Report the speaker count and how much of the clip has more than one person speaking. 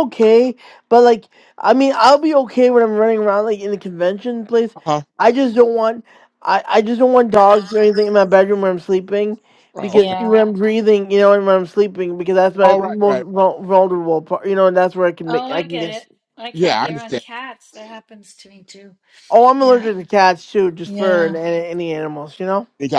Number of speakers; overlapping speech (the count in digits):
3, about 15%